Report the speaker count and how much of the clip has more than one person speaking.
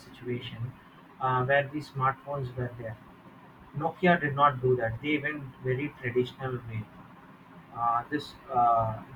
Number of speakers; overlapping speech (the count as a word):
one, no overlap